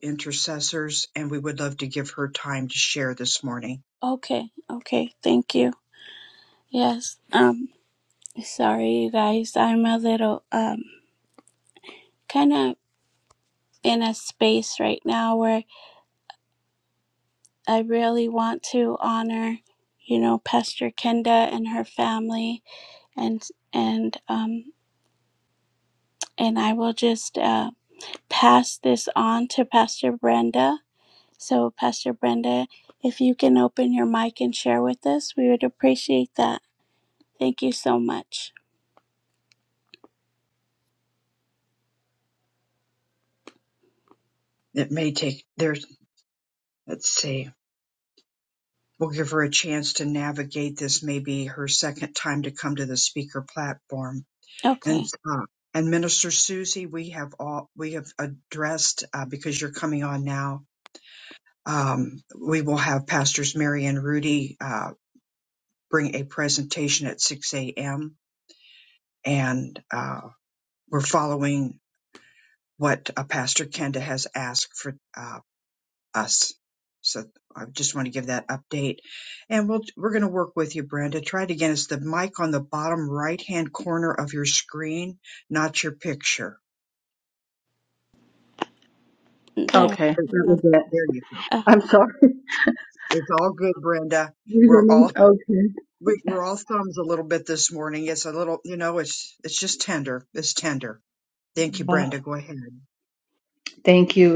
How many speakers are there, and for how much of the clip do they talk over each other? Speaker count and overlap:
3, about 1%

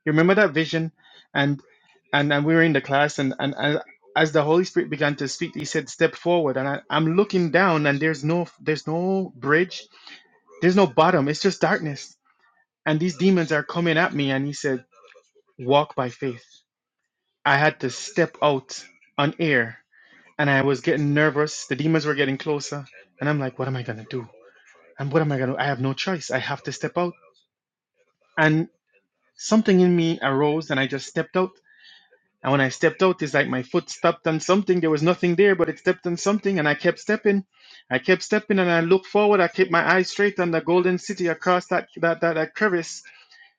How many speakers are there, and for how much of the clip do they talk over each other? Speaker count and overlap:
1, no overlap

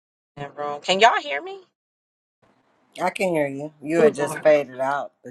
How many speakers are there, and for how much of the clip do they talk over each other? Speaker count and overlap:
2, about 10%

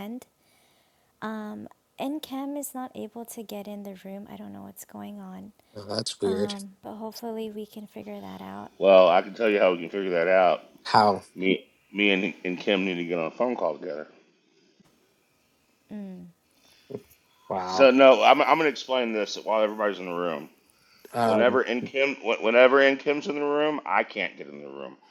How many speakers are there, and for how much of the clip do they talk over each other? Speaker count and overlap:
3, about 3%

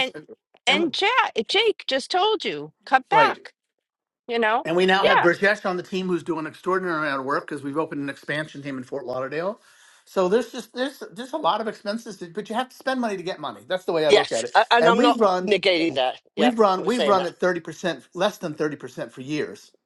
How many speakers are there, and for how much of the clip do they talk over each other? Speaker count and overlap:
3, about 16%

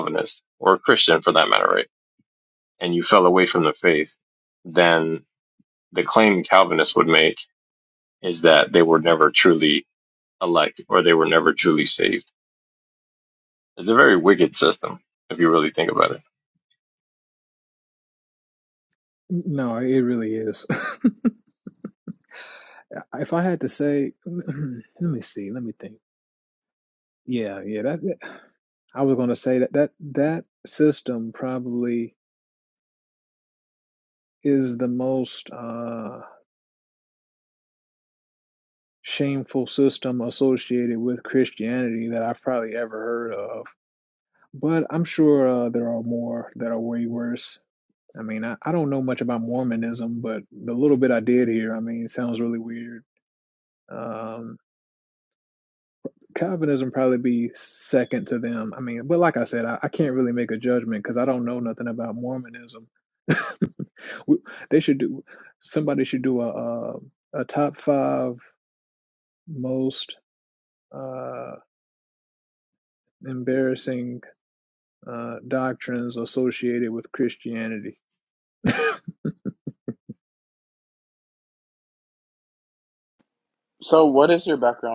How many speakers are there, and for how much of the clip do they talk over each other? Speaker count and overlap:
3, no overlap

